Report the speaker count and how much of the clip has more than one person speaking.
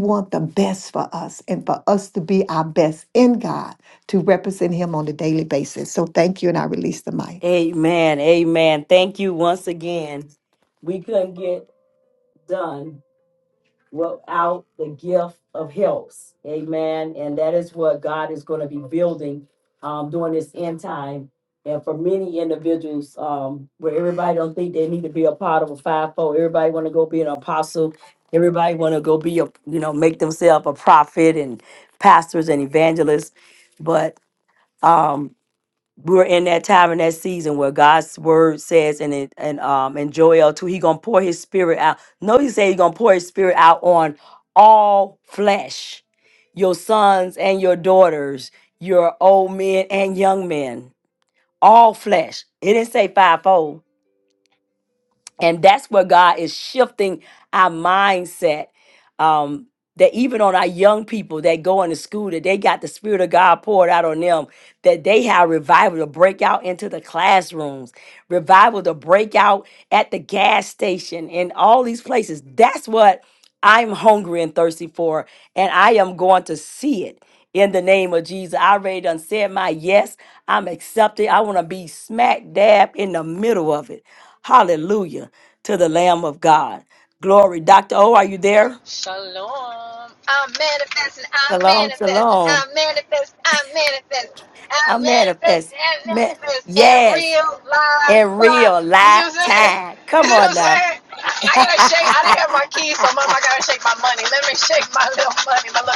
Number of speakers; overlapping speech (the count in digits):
3, about 5%